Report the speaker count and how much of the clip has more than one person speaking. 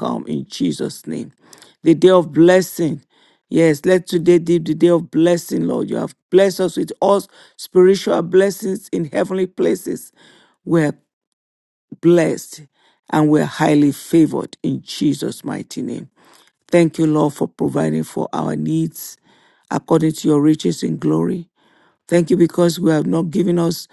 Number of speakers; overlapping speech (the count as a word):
one, no overlap